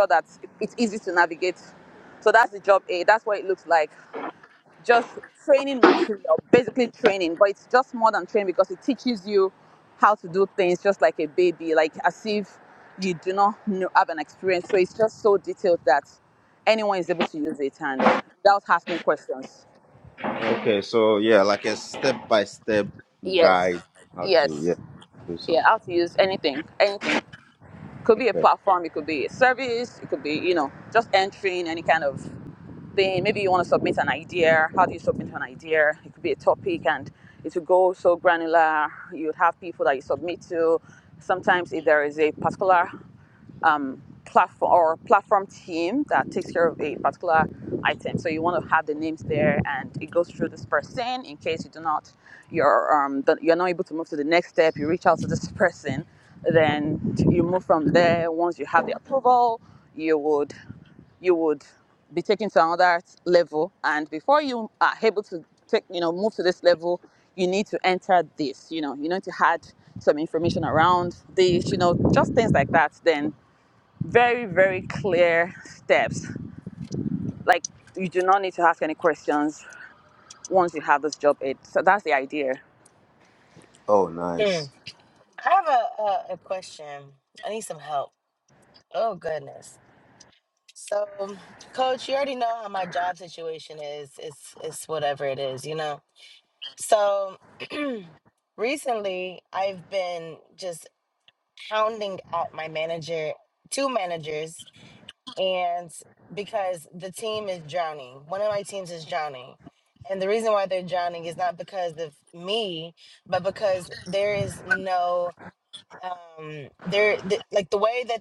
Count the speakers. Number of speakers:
3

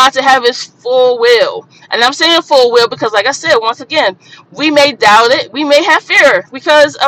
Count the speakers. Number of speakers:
1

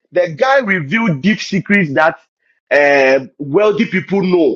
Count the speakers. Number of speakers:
1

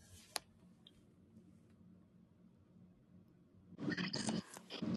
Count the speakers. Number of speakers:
0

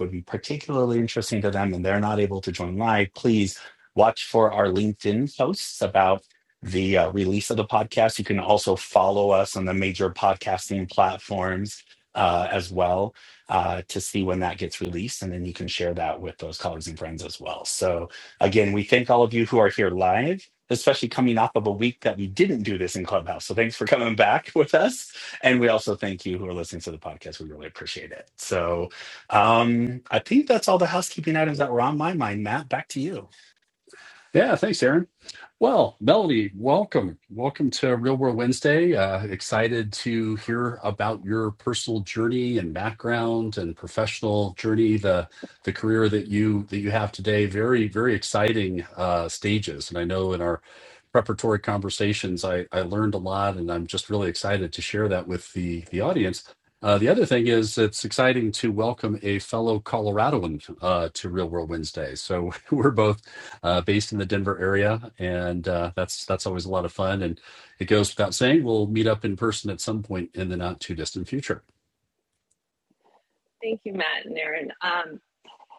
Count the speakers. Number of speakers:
3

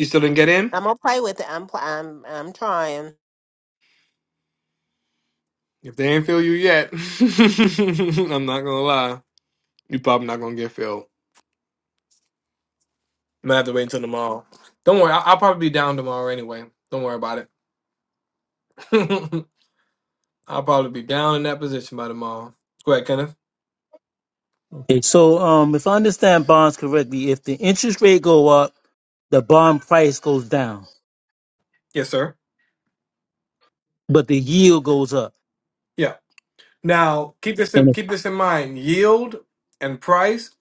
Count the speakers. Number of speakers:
3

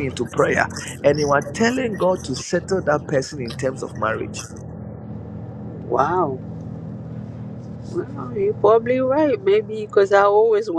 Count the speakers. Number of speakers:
2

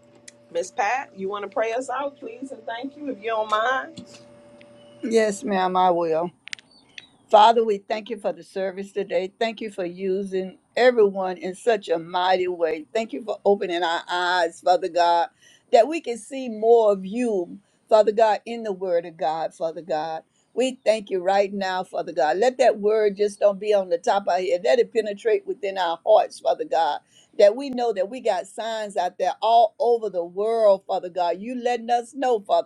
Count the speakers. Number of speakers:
2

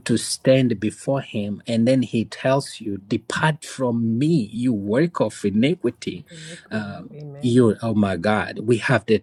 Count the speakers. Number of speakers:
2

